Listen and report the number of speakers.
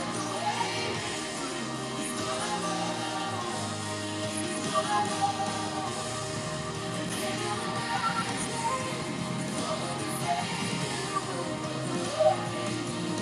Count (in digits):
0